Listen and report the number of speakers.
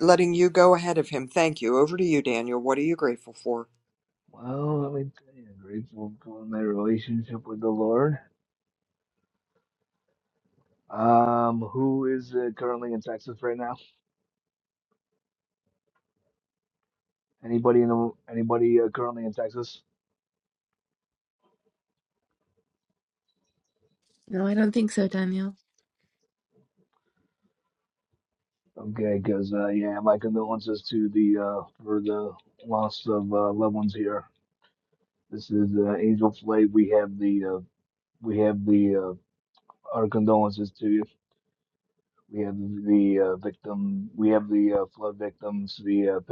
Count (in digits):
3